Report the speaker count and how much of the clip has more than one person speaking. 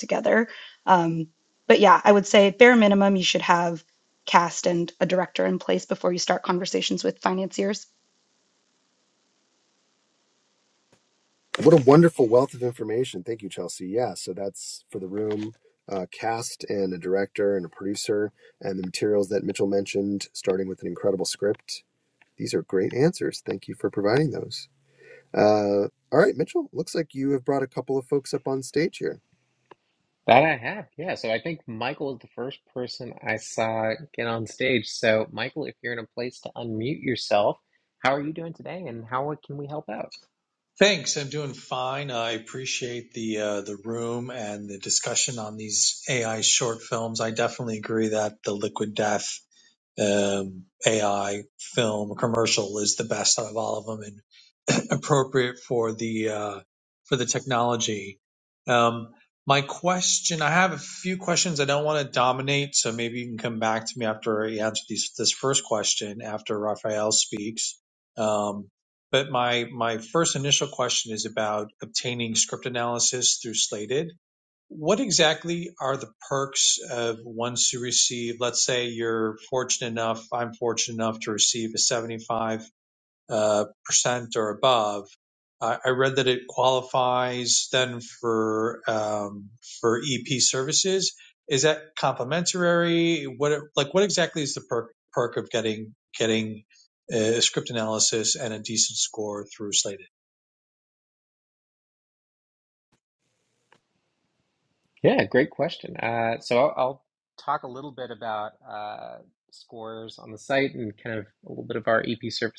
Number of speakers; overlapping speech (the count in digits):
4, no overlap